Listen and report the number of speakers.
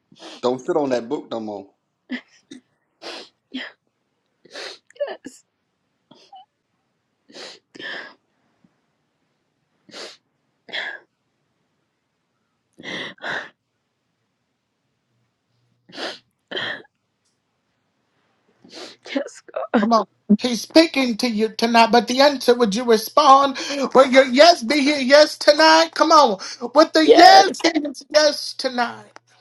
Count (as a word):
three